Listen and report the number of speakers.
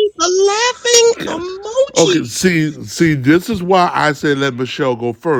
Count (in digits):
2